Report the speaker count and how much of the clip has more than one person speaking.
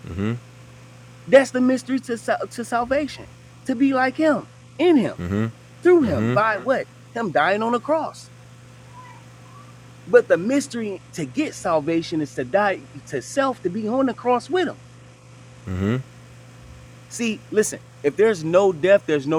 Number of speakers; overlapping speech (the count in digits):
2, about 2%